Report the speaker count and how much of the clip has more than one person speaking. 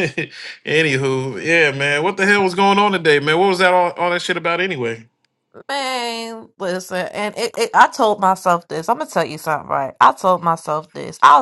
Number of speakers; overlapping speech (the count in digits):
2, no overlap